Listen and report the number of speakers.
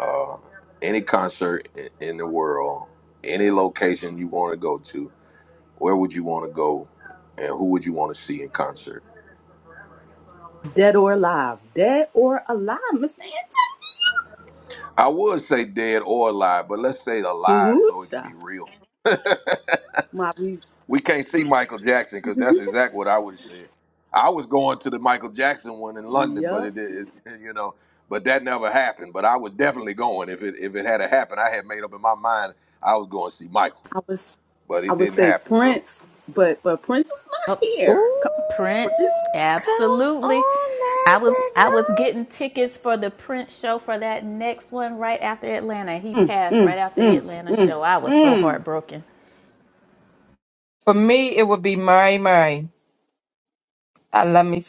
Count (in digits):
5